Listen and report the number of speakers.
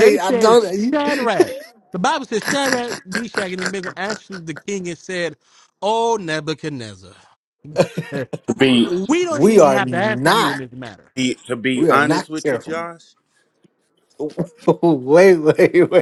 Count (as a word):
three